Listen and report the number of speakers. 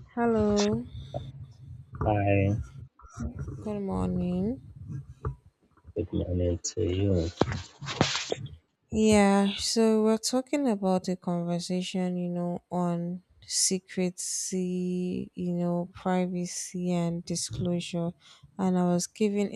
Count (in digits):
2